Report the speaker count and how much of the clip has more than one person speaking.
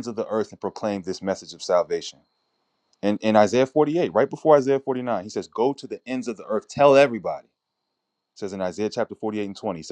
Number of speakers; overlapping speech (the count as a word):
one, no overlap